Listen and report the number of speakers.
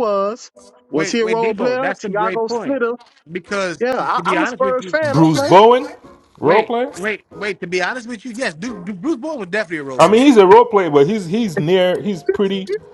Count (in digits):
3